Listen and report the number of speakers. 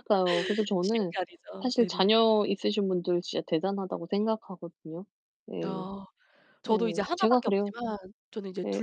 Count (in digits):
2